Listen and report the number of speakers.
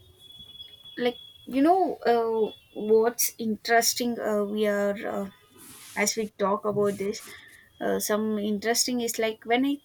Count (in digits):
1